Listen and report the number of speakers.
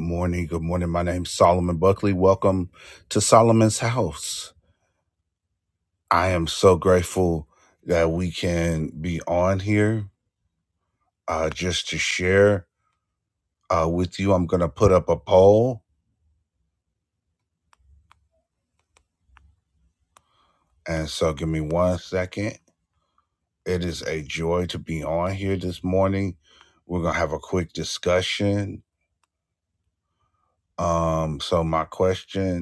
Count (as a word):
one